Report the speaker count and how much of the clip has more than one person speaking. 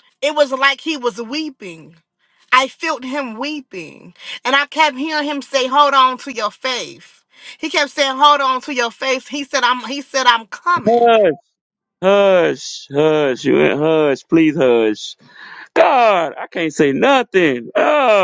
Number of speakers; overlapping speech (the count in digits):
2, about 2%